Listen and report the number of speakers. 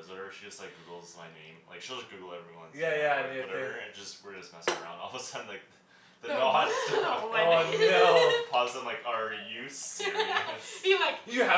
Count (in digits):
3